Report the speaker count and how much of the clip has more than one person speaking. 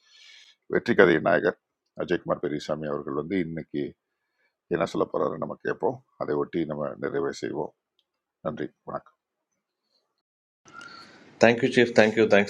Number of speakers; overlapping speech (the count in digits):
2, no overlap